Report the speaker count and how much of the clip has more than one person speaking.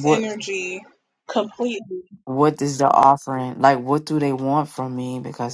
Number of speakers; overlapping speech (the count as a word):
two, about 5%